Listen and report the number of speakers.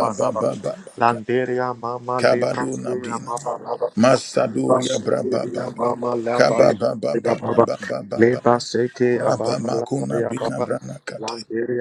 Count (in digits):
2